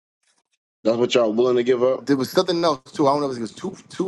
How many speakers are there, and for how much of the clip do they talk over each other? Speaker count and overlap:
2, no overlap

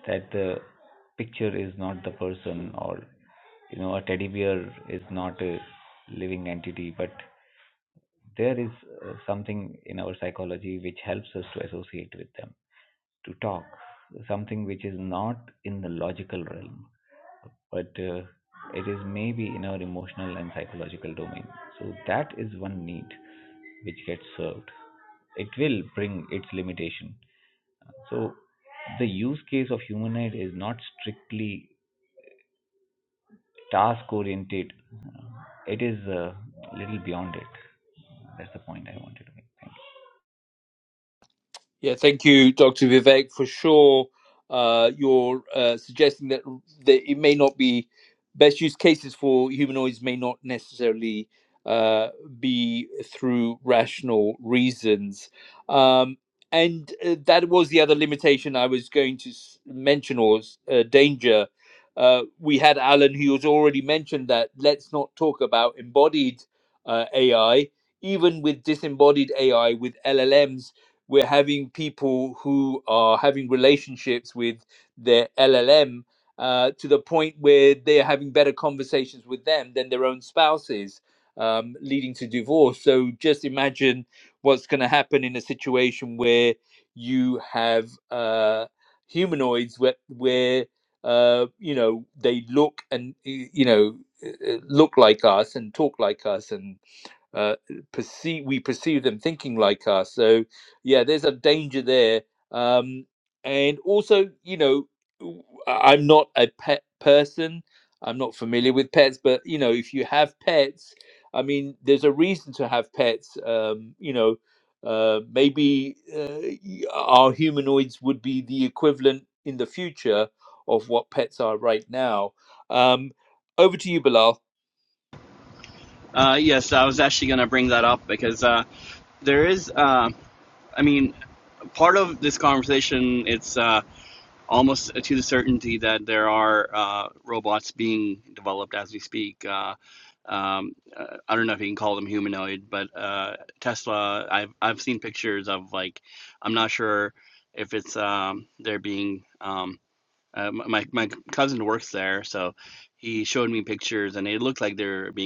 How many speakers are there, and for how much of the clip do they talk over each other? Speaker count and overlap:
3, no overlap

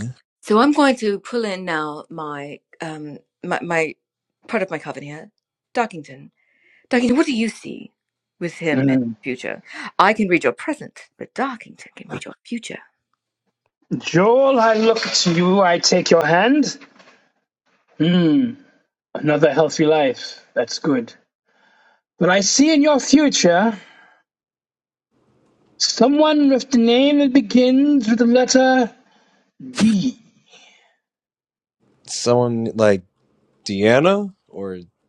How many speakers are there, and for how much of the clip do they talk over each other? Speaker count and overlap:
3, about 1%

